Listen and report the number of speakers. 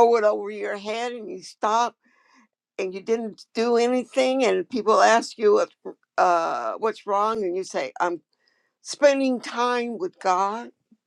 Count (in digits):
1